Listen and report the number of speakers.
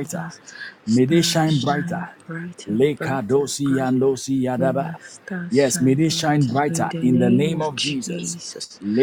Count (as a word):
two